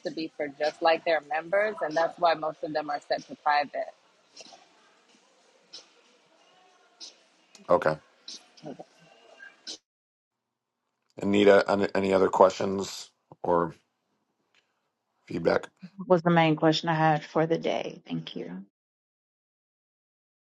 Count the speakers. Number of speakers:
3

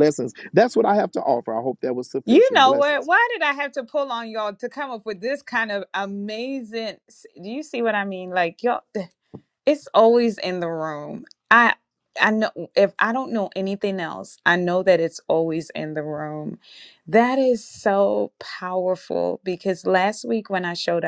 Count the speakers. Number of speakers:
2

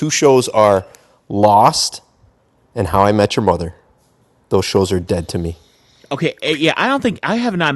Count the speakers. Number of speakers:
2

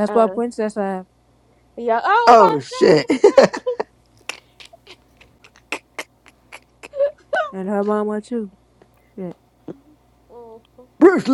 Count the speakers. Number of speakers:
3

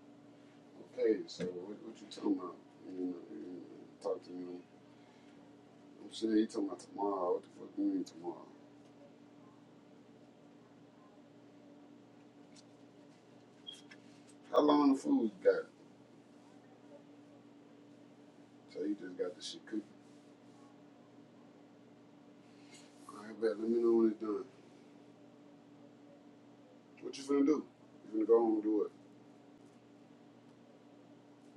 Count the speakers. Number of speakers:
1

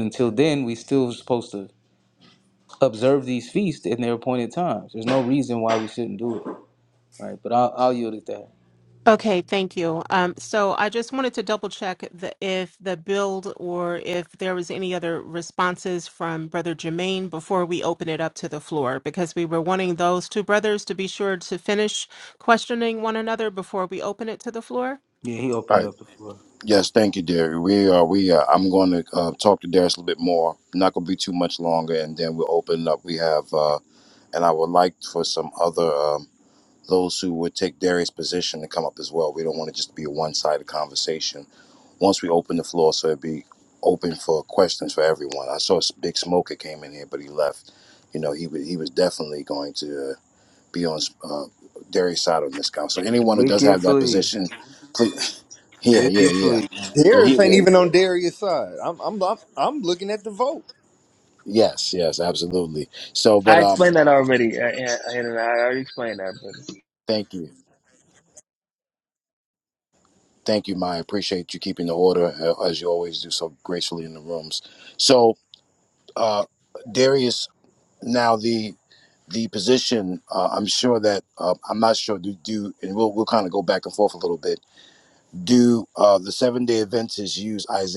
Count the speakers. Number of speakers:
5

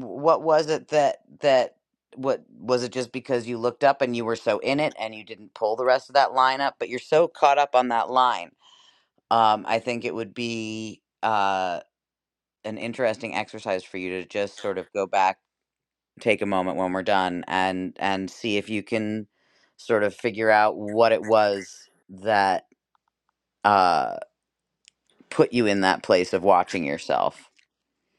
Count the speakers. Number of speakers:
1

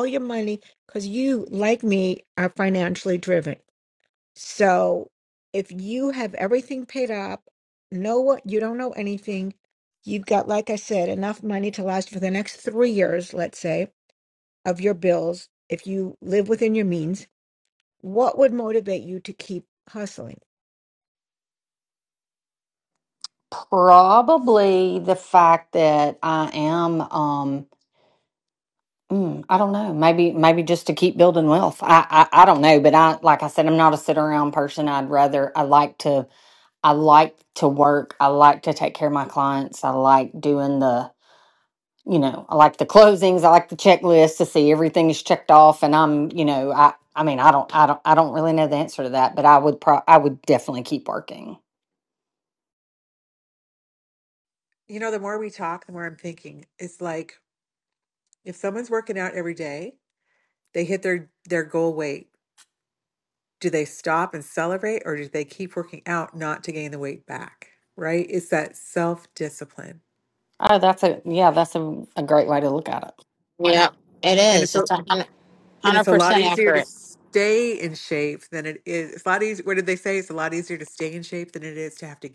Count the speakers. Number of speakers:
4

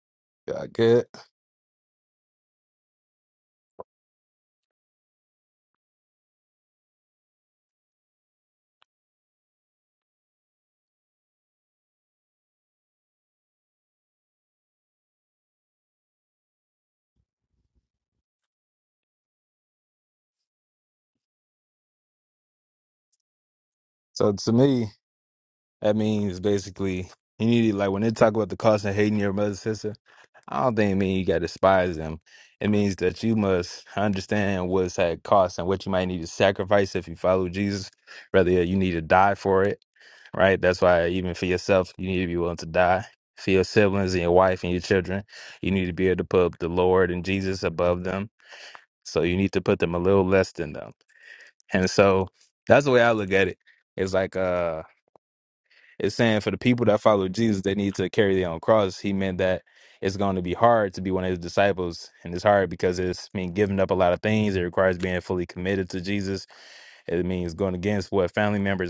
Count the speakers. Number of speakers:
1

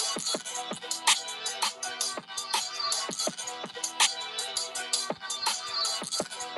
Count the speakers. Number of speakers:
0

